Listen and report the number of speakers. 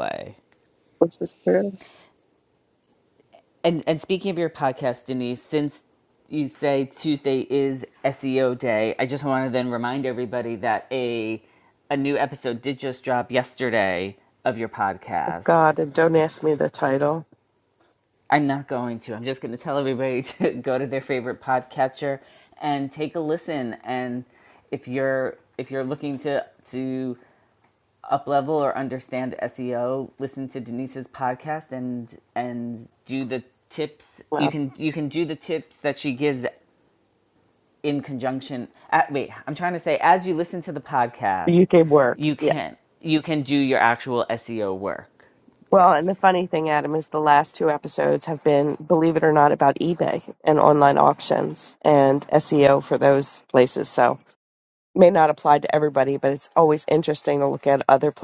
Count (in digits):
2